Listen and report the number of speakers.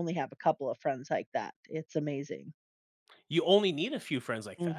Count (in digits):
2